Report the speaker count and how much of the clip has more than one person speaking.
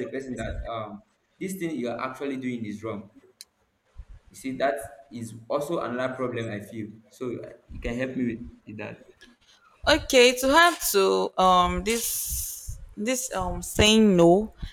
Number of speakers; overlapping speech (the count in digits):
2, no overlap